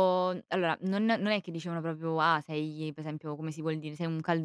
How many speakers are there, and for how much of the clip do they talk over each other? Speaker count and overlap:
one, no overlap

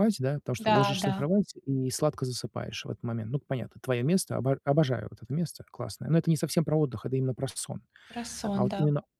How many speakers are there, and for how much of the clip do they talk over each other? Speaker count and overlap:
two, about 11%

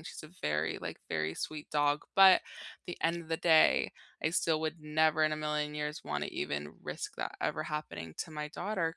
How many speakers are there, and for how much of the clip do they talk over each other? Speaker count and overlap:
one, no overlap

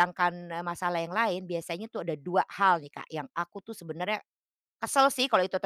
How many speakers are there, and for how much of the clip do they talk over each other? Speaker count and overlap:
one, no overlap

